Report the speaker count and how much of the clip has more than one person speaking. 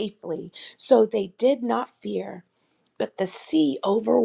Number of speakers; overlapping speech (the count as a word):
one, no overlap